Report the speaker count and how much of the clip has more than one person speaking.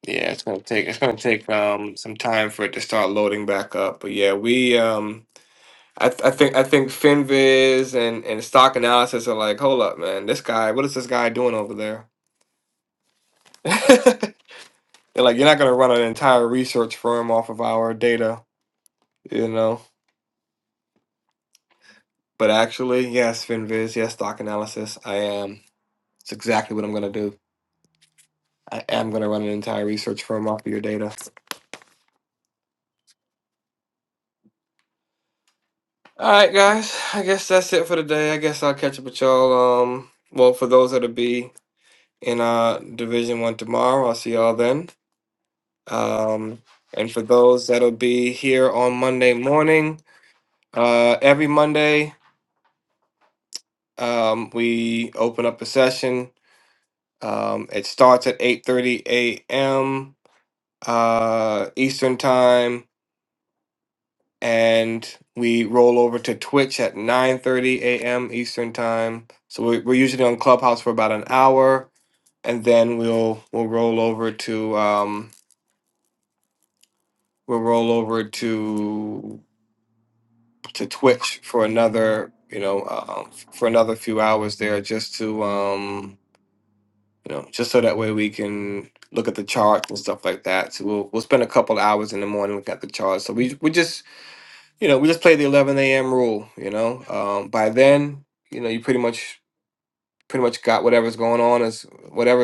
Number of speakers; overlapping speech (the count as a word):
one, no overlap